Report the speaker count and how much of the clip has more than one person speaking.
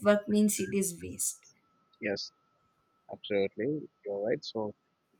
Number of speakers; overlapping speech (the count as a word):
two, no overlap